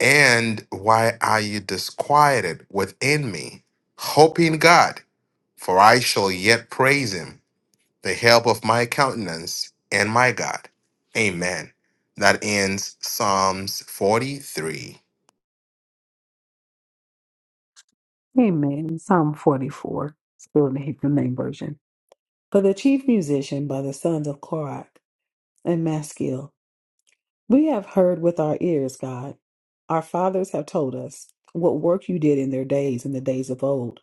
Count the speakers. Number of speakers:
2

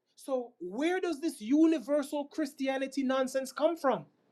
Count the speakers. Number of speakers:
1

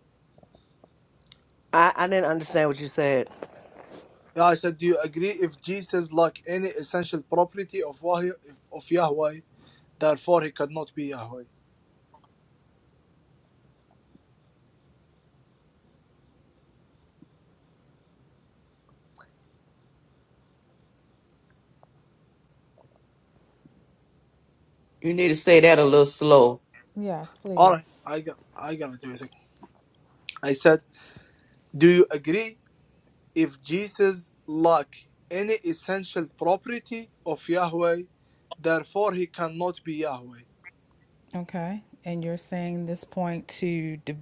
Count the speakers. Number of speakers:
4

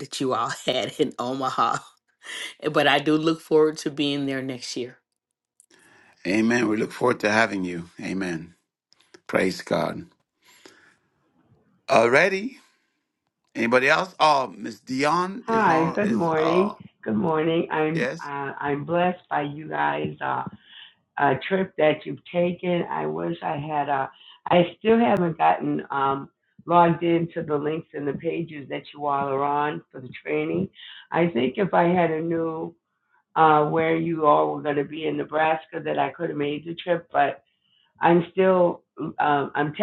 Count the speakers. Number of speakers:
3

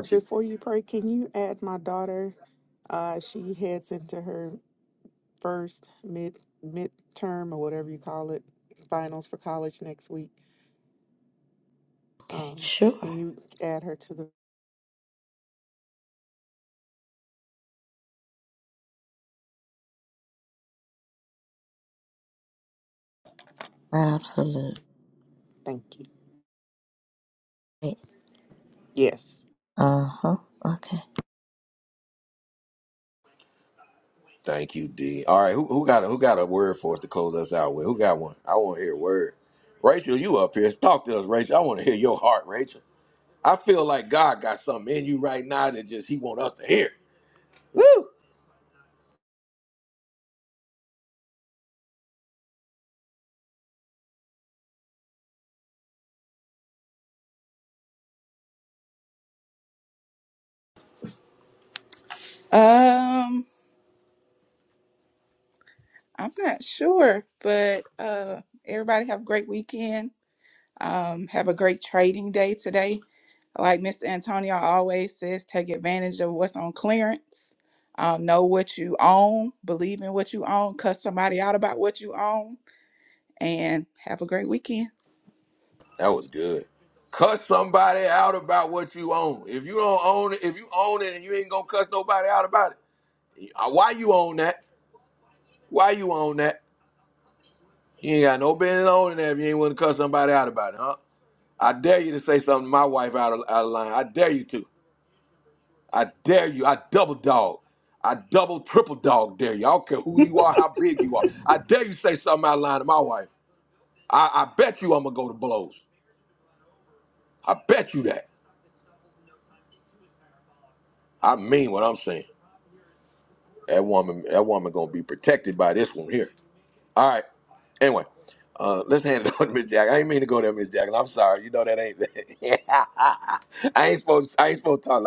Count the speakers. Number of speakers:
4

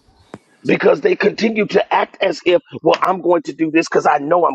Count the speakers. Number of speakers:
1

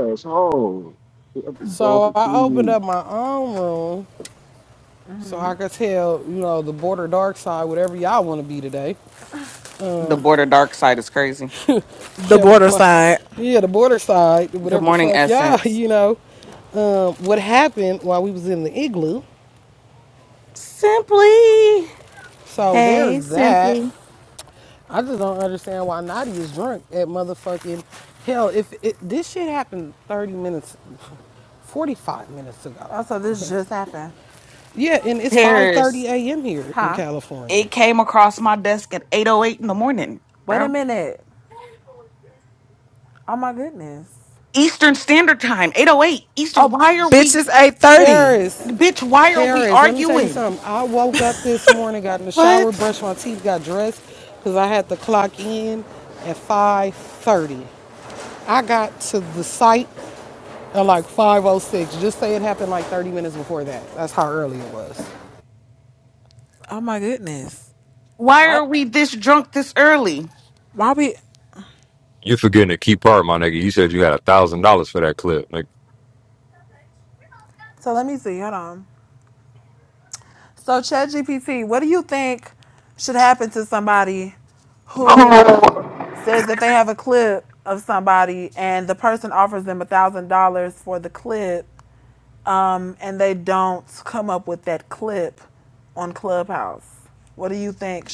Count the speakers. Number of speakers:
5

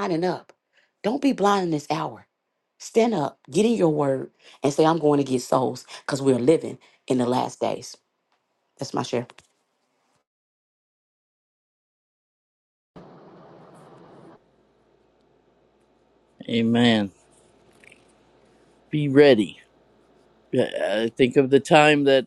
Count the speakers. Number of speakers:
2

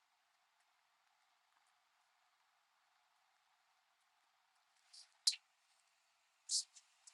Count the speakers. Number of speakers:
0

